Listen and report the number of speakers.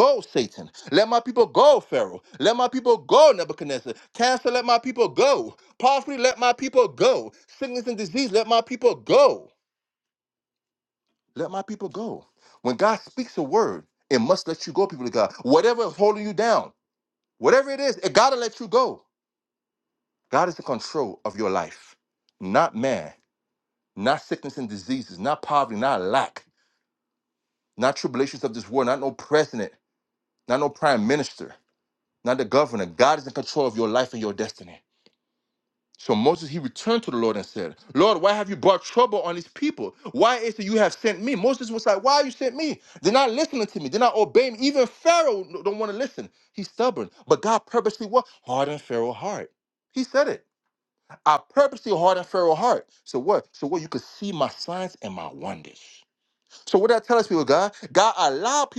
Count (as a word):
one